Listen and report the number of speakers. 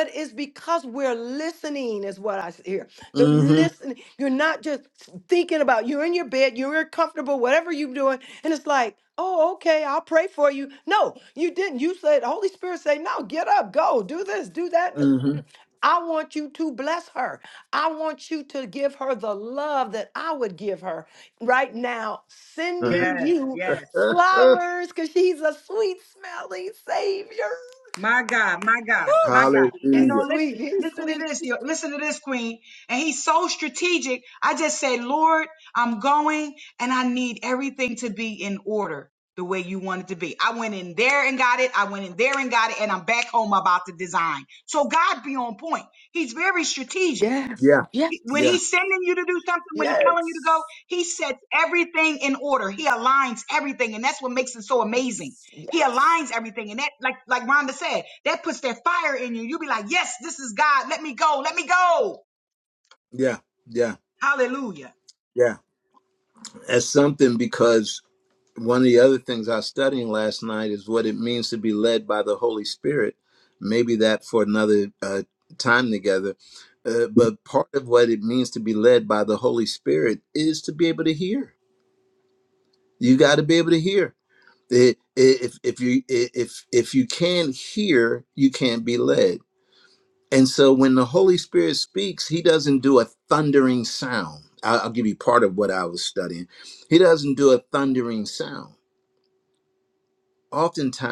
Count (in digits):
3